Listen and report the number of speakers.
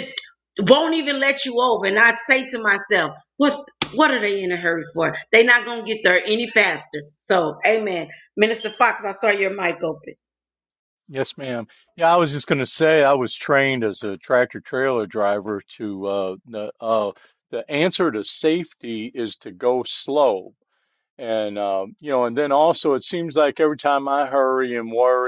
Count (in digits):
2